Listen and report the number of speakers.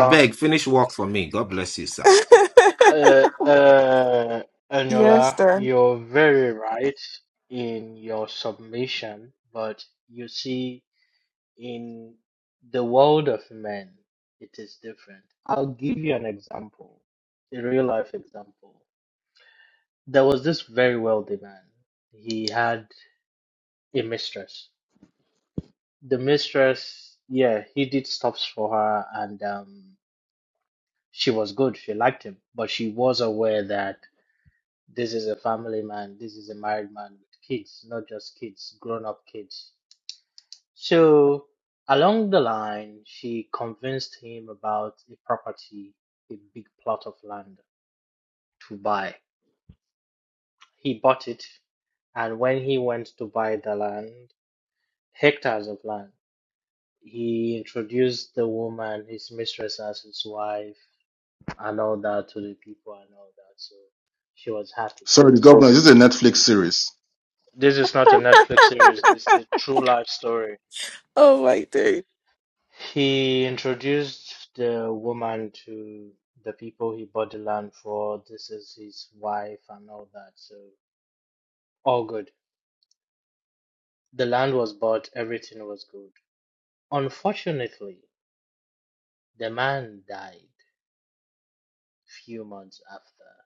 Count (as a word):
four